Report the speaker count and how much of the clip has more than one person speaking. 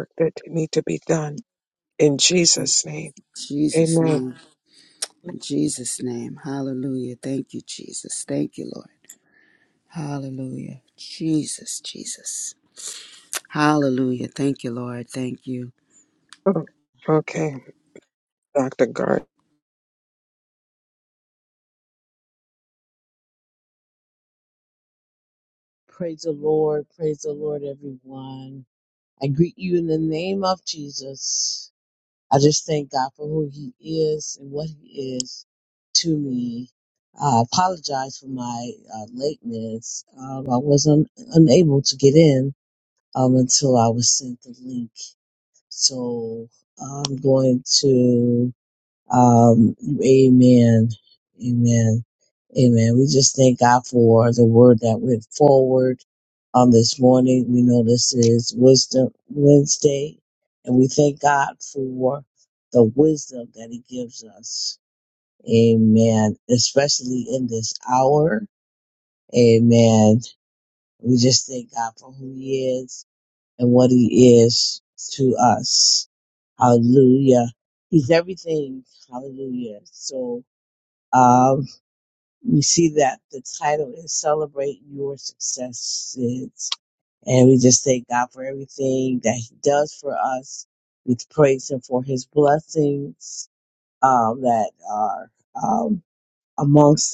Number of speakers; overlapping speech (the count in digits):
3, about 1%